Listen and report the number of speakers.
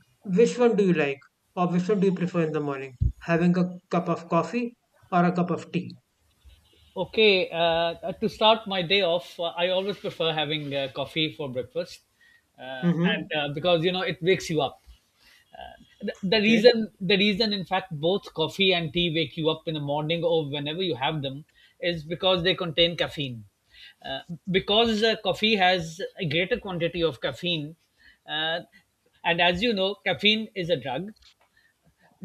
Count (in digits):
2